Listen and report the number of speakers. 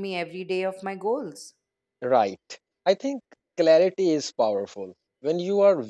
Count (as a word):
two